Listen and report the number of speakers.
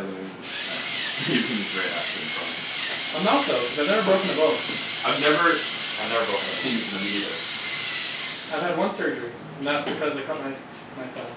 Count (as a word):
three